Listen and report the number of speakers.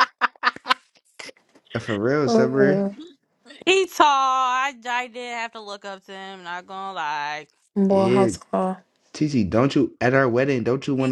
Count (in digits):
3